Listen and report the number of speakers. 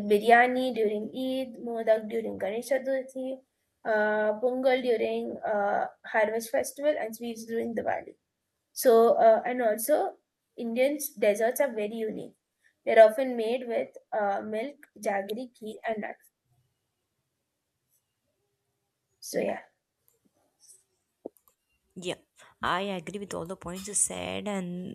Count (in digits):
2